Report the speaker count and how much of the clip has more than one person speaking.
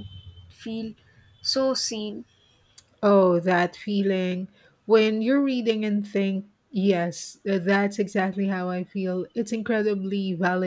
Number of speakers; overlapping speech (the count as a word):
two, no overlap